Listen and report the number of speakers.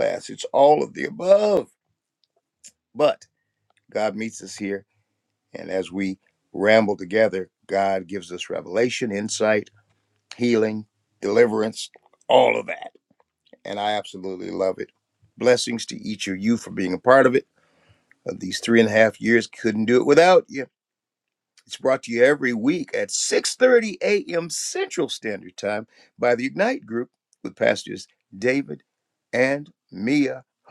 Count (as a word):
one